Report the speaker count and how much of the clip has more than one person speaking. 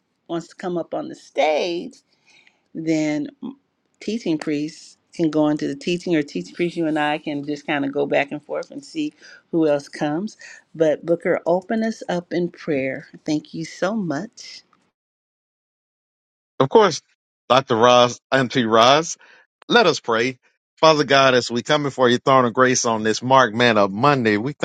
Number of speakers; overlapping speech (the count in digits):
2, no overlap